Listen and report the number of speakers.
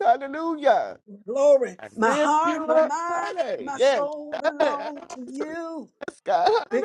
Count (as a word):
two